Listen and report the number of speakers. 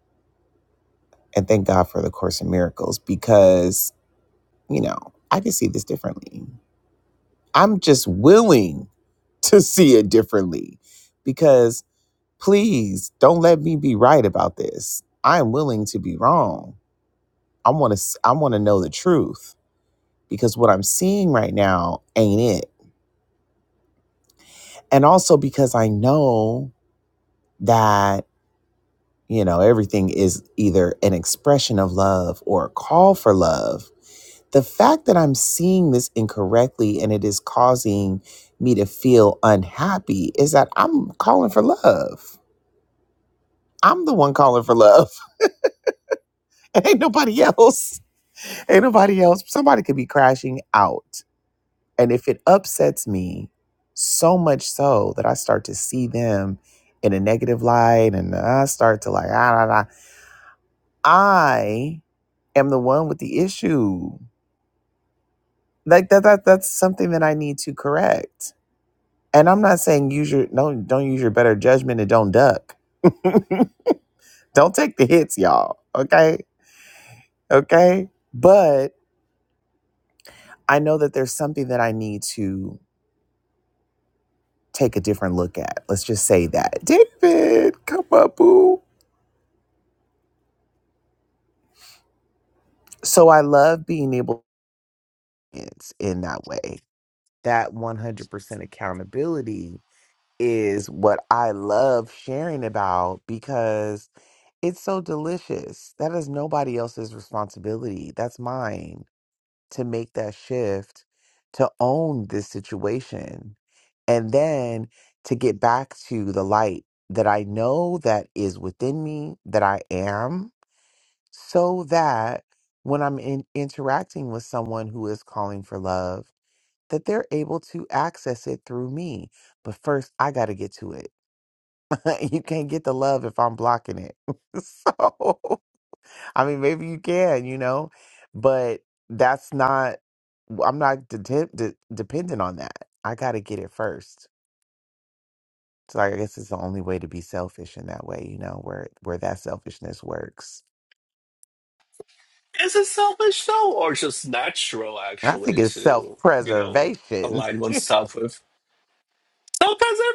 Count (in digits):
2